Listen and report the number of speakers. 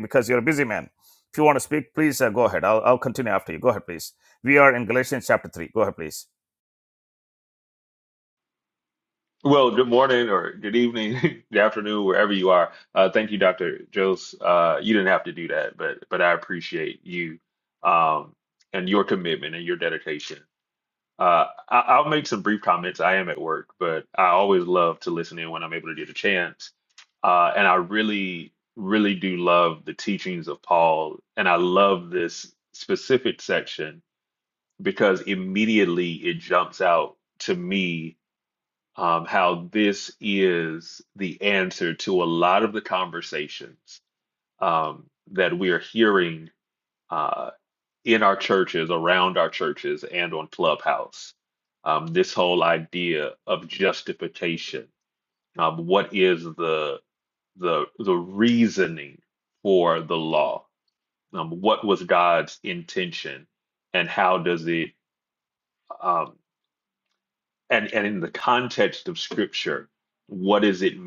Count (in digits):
2